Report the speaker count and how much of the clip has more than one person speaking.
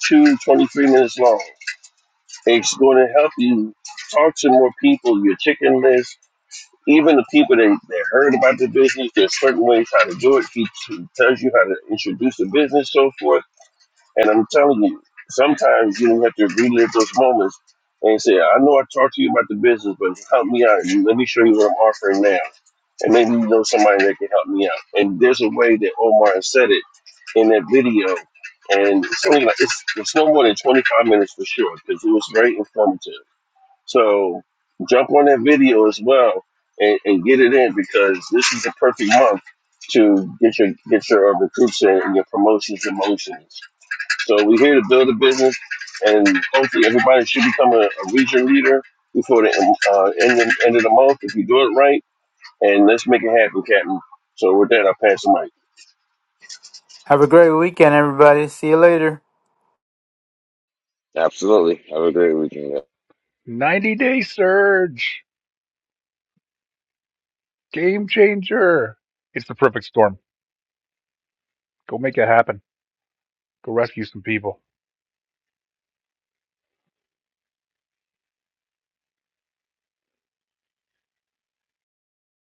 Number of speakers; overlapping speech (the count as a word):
four, no overlap